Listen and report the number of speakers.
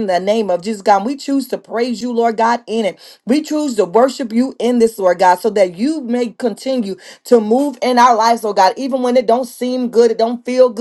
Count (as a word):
one